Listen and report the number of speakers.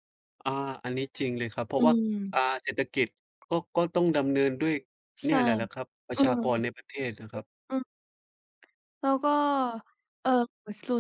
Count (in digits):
2